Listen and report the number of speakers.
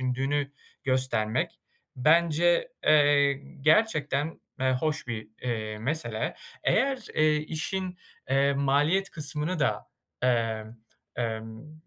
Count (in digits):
1